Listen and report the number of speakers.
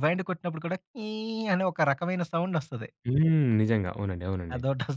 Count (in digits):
2